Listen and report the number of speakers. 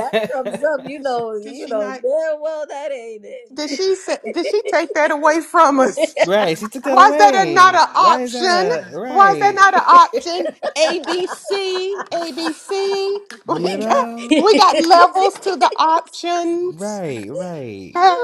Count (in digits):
3